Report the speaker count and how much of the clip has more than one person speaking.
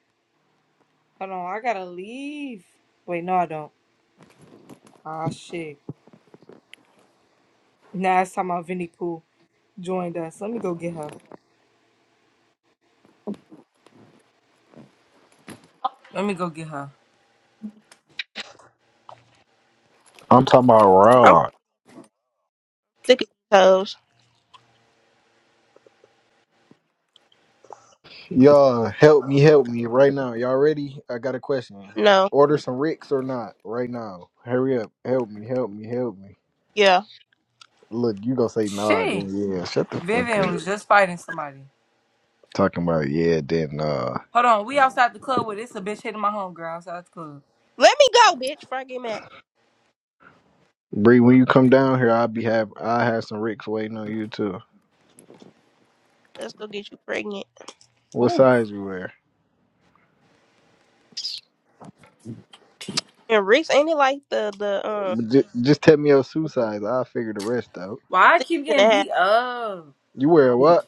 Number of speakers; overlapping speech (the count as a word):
three, about 4%